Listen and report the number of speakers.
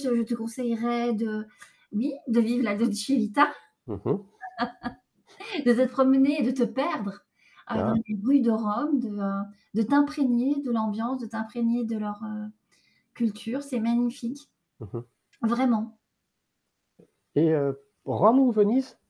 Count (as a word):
two